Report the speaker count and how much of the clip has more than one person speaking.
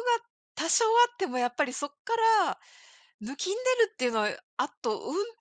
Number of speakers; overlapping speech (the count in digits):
1, no overlap